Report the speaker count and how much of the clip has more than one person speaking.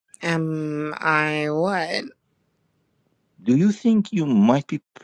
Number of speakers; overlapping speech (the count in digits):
2, no overlap